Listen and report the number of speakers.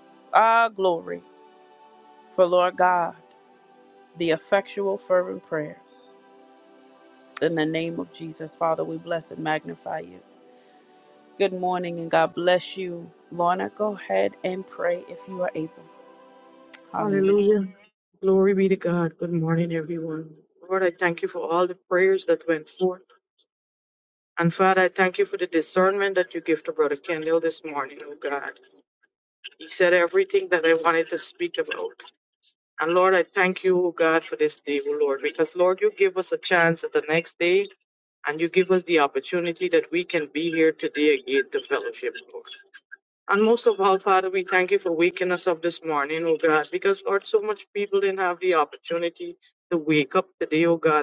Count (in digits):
2